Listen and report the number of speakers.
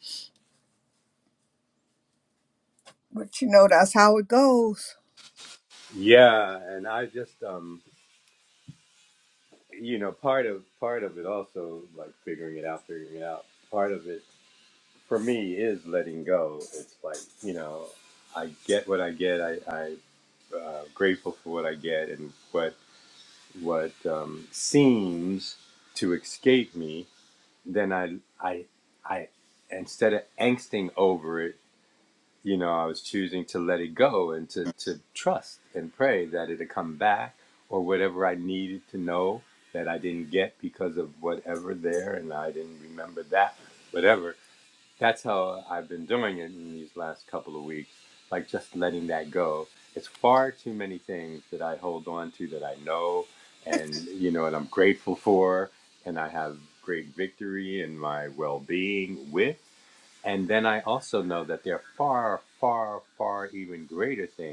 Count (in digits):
2